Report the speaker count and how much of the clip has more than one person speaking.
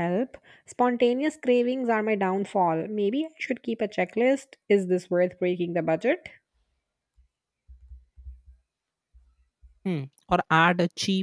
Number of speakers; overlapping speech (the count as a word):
two, no overlap